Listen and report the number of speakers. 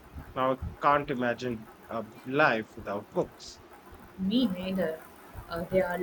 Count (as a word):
two